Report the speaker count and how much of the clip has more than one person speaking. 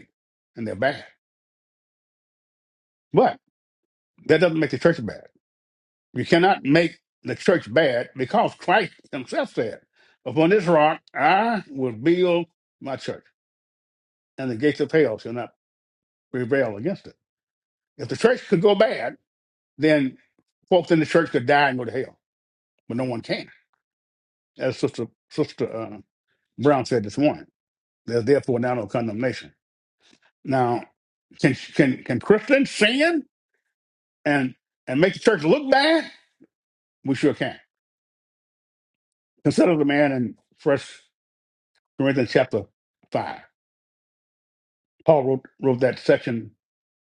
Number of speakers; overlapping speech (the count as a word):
one, no overlap